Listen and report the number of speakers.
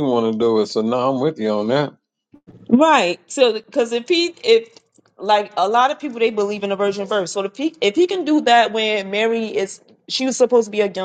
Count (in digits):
2